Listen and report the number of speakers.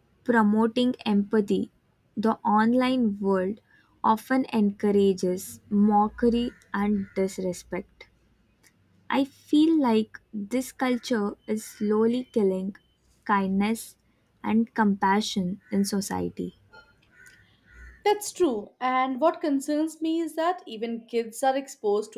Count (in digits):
2